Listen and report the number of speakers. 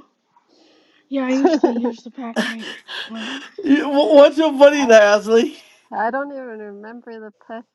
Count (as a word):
three